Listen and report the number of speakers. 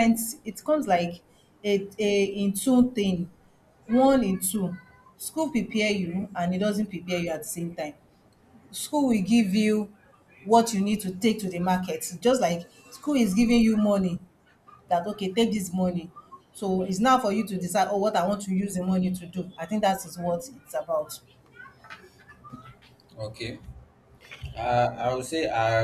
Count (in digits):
2